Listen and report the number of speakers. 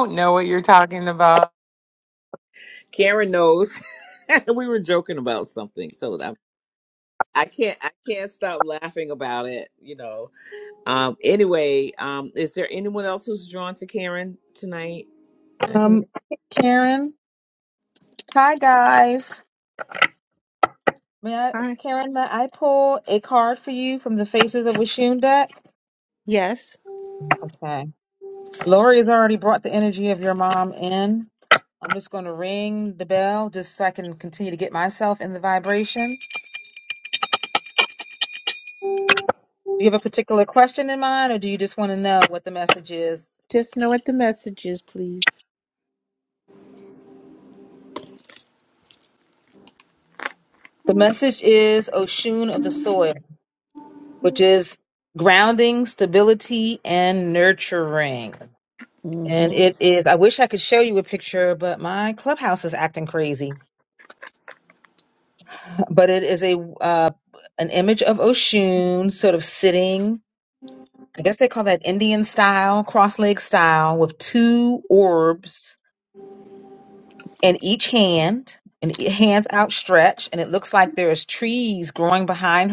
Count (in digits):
4